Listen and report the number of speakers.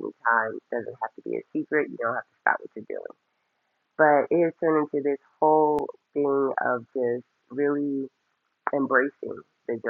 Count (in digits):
1